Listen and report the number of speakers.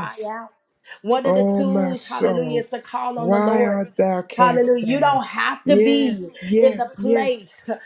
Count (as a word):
two